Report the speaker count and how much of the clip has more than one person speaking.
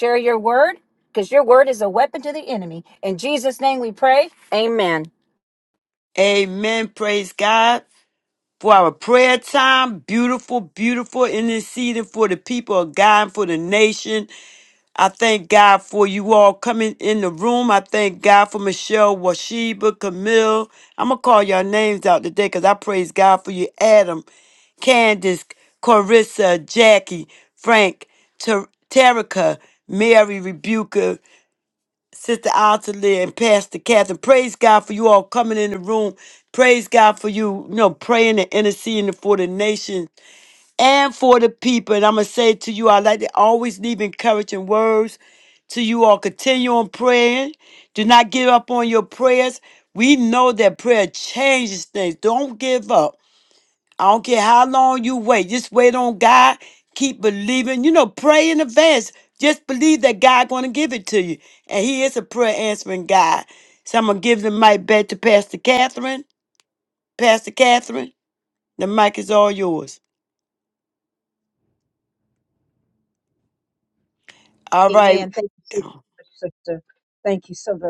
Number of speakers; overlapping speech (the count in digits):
3, under 1%